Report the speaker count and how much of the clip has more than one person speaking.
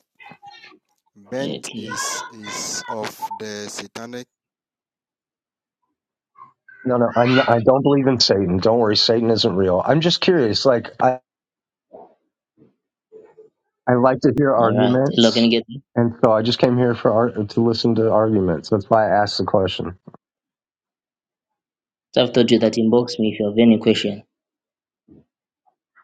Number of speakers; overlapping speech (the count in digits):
3, about 5%